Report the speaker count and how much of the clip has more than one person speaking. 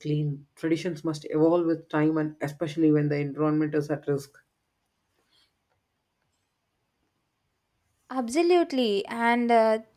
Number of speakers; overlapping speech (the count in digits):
2, no overlap